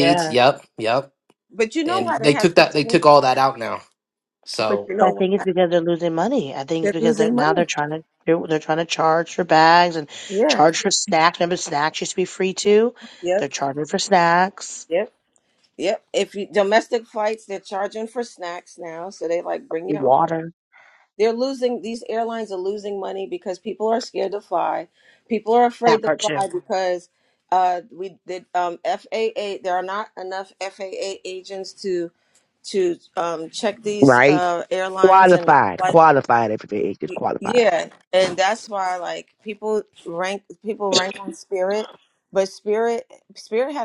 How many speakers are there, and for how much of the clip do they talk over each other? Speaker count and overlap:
four, about 14%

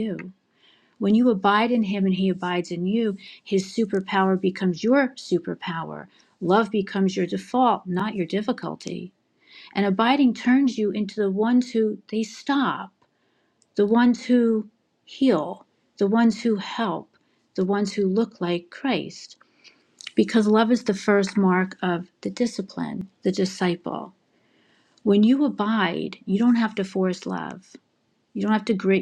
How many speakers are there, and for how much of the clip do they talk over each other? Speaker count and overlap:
one, no overlap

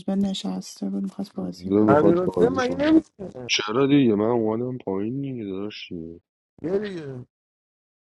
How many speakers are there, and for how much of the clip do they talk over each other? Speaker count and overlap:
three, about 19%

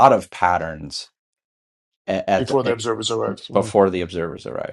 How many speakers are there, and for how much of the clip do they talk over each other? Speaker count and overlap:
two, about 11%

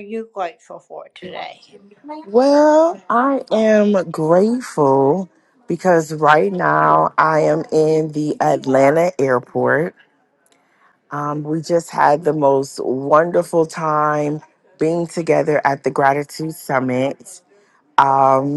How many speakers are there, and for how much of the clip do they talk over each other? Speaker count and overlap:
two, no overlap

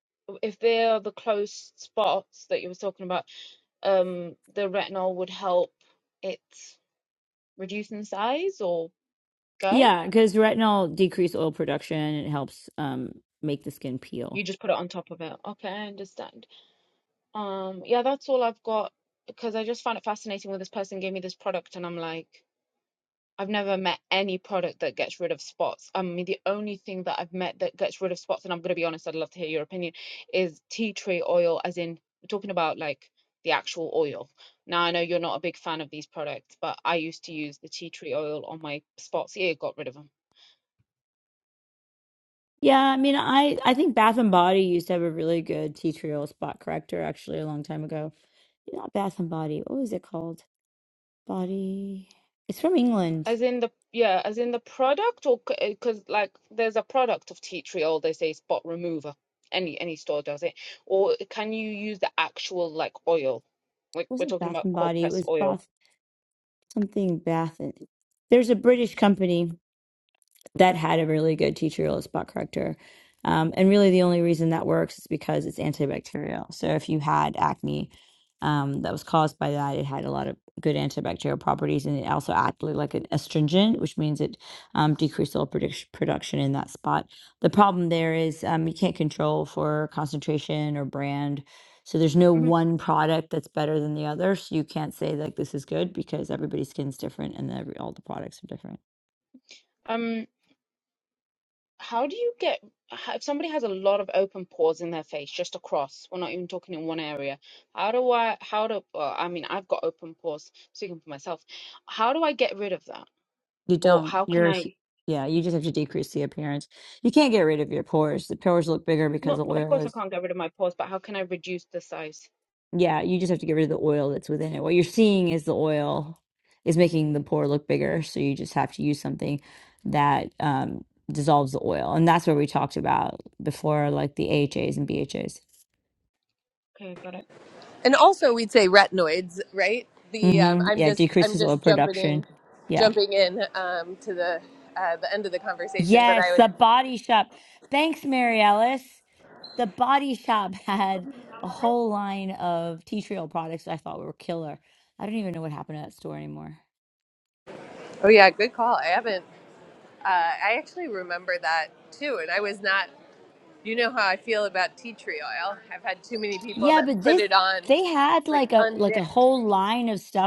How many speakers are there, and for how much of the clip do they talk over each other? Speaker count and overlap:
three, about 5%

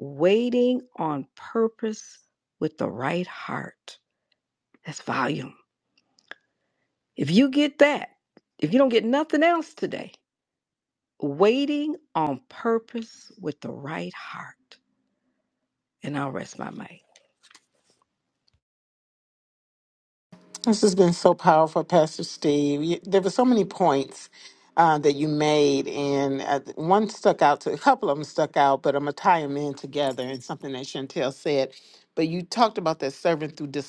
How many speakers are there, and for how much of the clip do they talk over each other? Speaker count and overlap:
two, no overlap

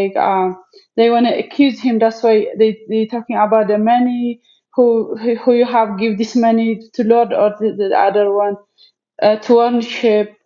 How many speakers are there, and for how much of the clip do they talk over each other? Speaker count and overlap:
one, no overlap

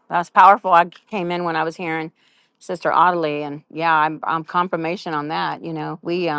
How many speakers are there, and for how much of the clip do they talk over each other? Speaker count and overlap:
one, no overlap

